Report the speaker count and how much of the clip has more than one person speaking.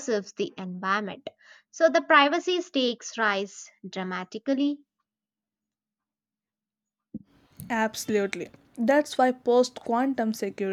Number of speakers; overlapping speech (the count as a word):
two, no overlap